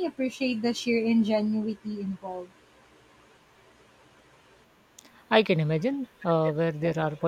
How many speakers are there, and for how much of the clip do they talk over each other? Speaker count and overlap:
two, no overlap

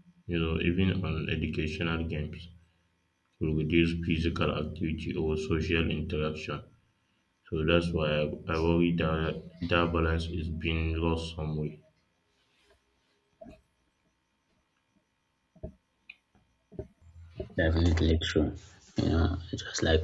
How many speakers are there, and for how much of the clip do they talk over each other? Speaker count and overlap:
two, no overlap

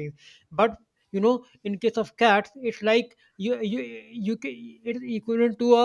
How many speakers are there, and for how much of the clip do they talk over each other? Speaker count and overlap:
one, no overlap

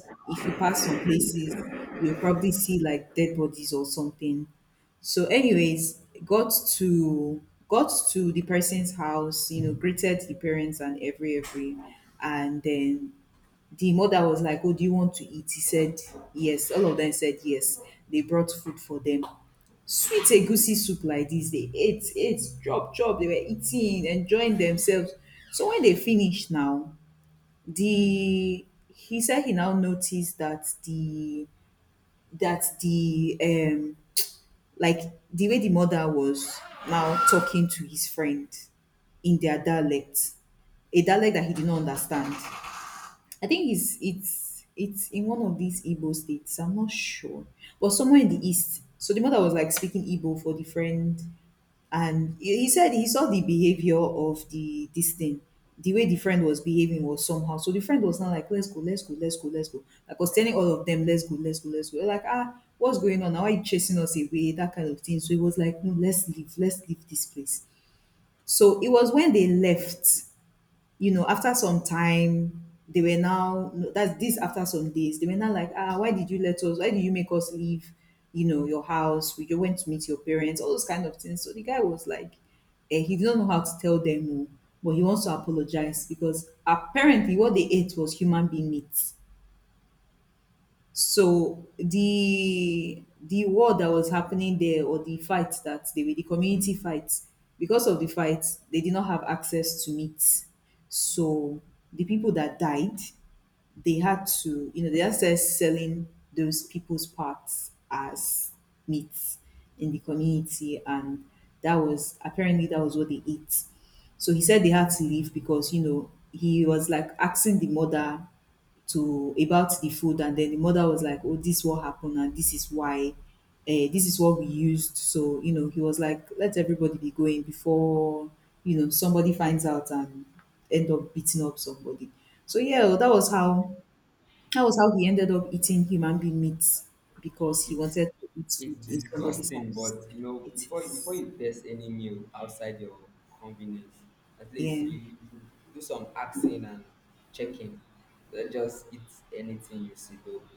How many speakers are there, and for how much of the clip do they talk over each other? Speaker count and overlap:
two, about 1%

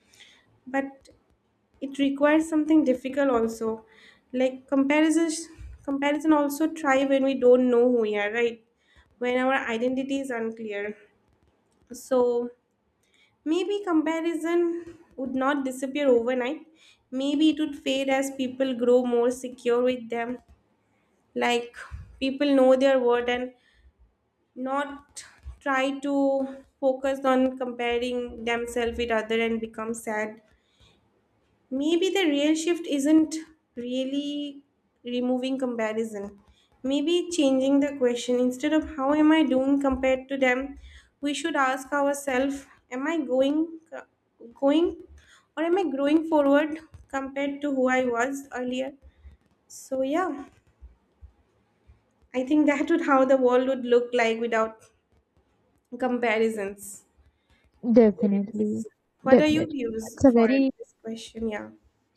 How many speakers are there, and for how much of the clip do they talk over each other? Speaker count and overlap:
two, about 2%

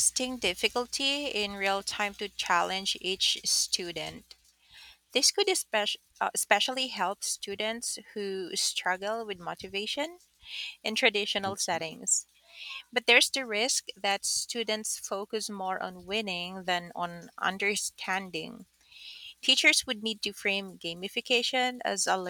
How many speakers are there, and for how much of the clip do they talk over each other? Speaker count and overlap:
one, no overlap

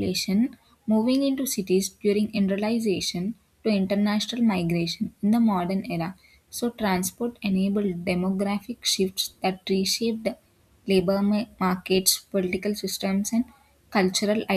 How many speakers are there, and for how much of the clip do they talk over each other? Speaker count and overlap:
one, no overlap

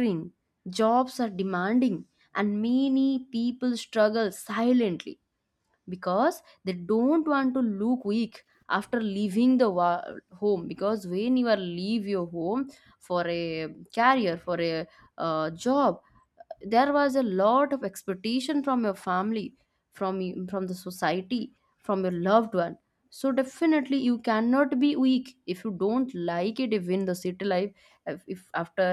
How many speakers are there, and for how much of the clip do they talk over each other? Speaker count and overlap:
one, no overlap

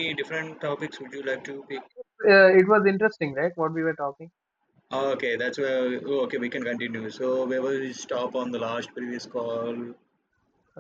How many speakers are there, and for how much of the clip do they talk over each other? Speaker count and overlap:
two, no overlap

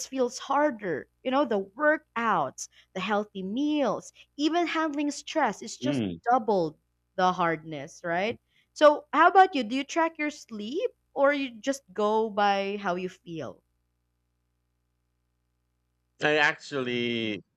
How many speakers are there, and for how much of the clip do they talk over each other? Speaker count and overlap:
two, about 2%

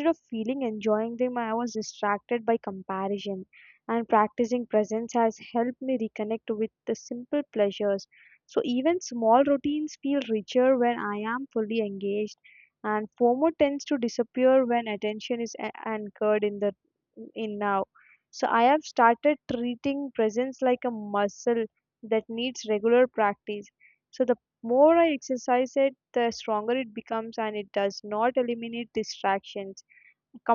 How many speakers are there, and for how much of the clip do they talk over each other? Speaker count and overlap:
one, no overlap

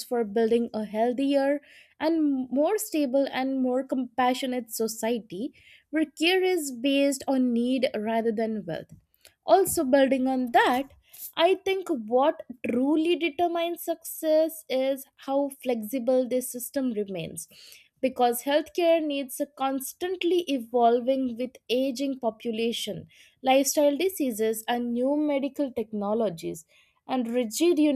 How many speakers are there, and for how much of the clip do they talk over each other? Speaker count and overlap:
one, no overlap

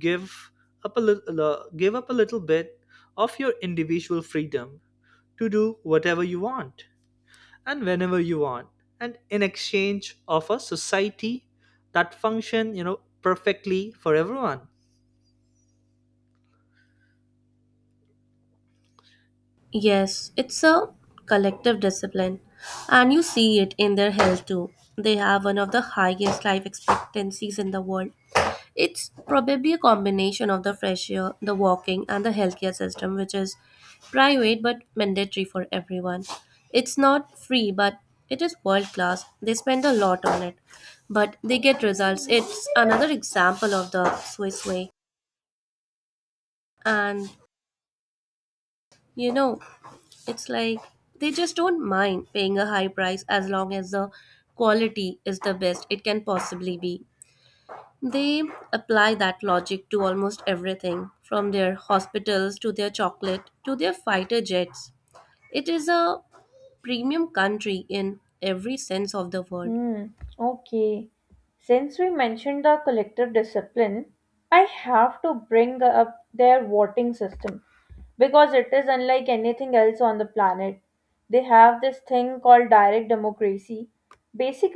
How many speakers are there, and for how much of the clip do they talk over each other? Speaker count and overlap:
three, under 1%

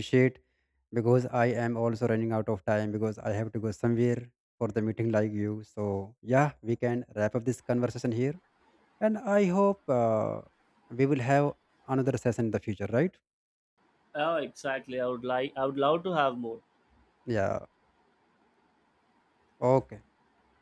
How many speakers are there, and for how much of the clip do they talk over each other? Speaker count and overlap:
two, no overlap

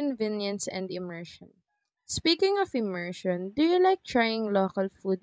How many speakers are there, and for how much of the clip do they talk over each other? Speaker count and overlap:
one, no overlap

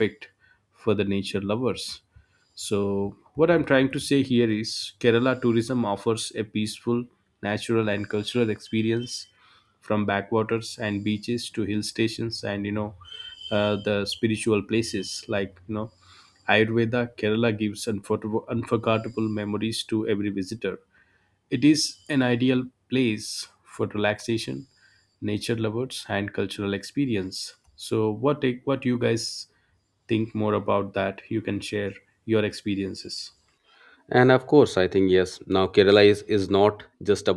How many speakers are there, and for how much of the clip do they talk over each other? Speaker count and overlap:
two, no overlap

